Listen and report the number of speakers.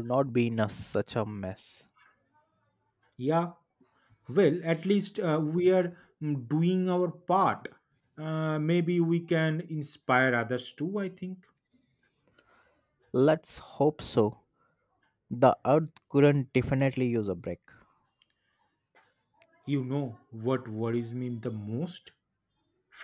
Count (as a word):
two